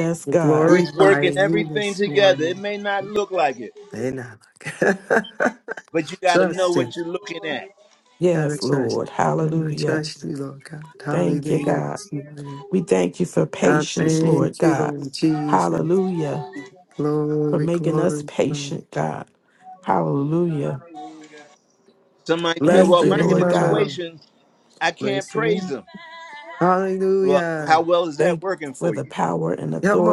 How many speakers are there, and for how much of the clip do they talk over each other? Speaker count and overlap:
4, about 54%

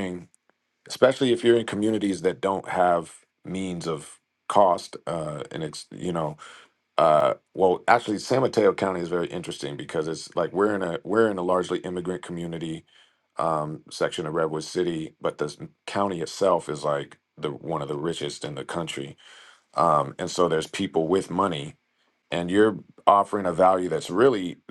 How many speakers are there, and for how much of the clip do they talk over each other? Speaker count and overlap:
1, no overlap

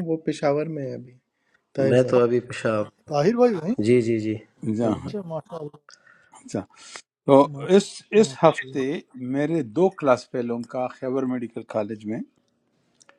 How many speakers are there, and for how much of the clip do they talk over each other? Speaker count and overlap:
4, about 10%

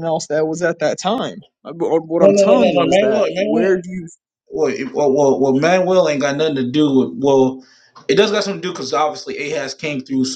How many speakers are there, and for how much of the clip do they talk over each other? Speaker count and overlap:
2, about 15%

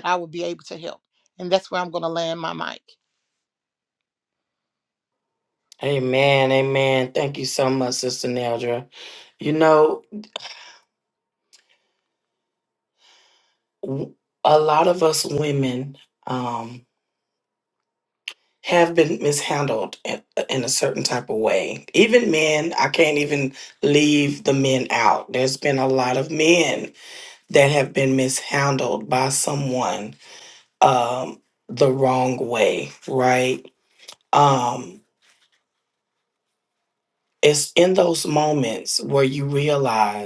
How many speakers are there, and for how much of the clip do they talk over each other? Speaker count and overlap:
2, no overlap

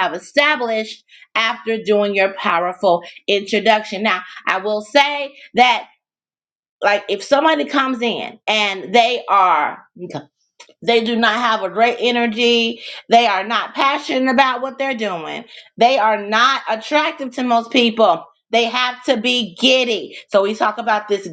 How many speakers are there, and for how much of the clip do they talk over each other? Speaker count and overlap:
1, no overlap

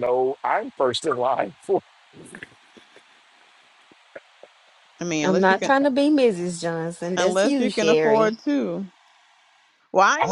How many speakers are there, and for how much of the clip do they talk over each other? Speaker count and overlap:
3, about 17%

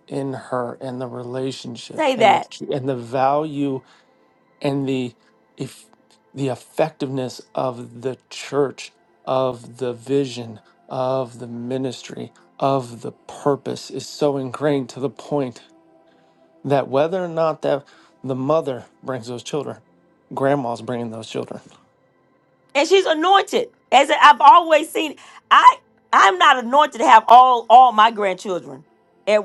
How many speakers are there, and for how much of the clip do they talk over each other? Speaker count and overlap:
2, about 2%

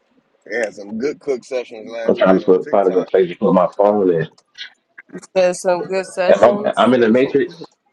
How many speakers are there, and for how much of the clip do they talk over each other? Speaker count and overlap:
3, about 29%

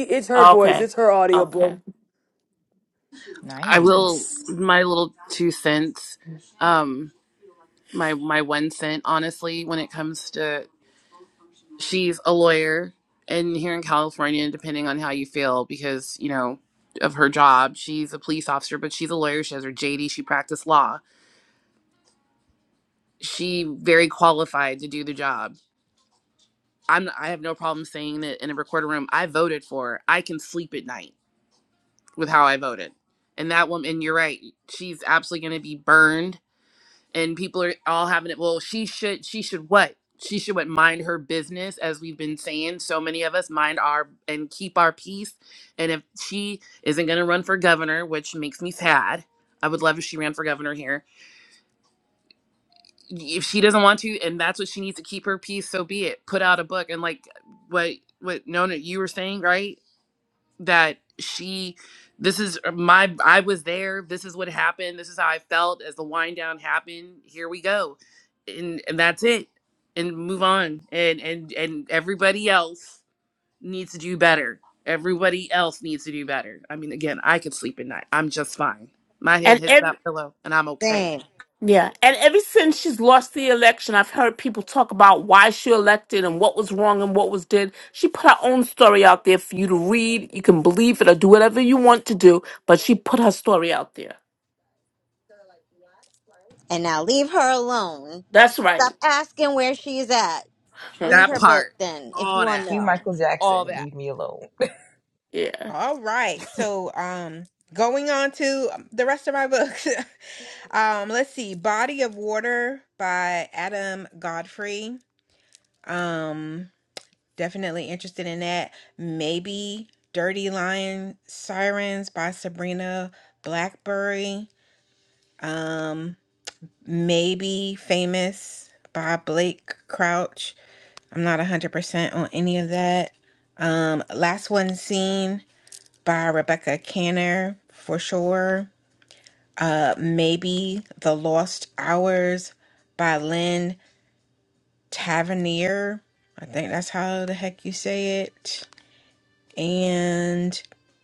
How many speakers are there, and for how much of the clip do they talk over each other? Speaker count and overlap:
6, about 3%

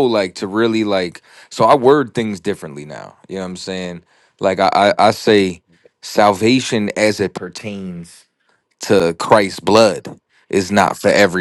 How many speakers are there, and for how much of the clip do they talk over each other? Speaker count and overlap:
1, no overlap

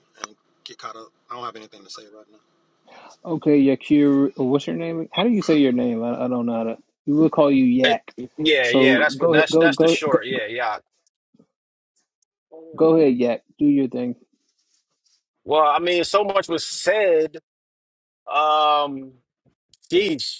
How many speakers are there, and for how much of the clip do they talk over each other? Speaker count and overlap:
3, about 8%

